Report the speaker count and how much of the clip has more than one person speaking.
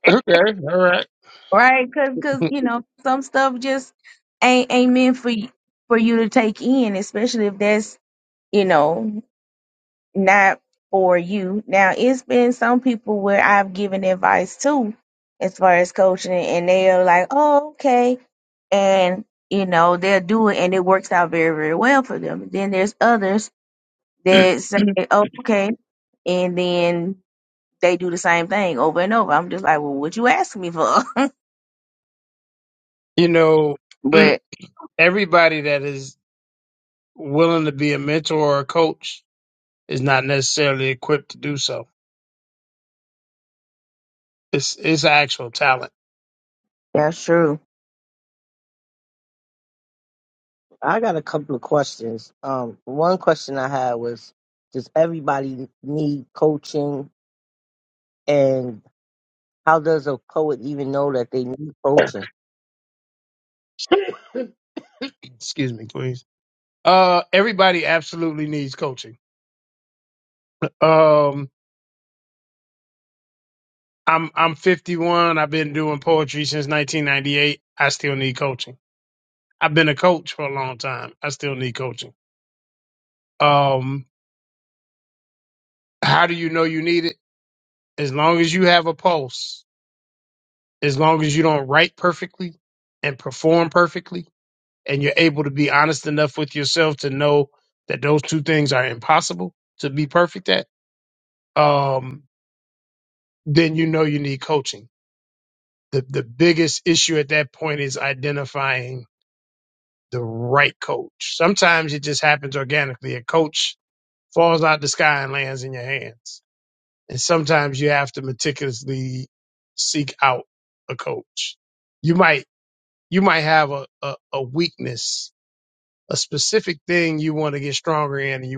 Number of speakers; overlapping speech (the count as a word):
three, no overlap